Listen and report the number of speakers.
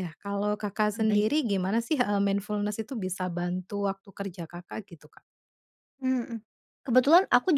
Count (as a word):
two